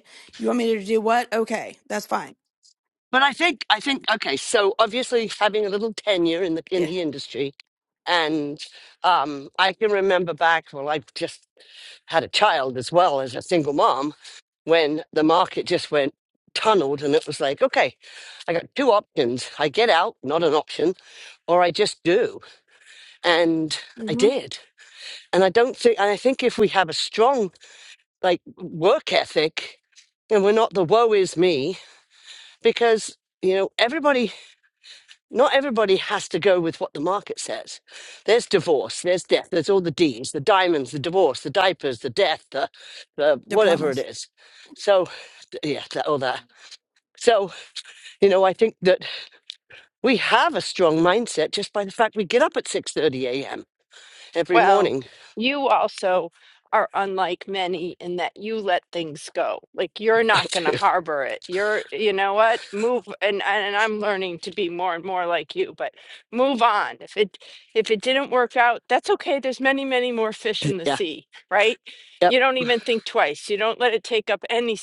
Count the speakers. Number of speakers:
three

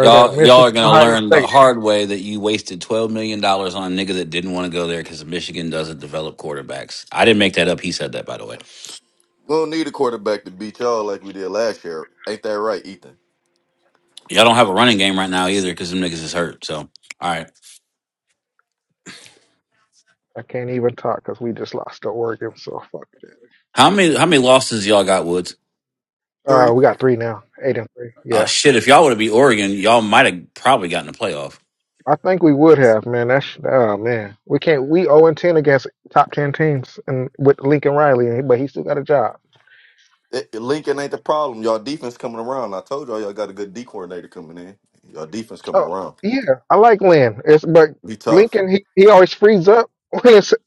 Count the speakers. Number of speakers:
three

